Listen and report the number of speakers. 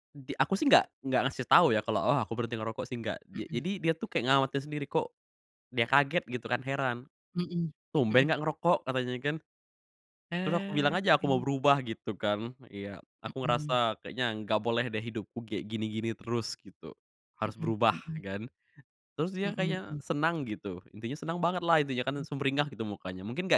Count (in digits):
2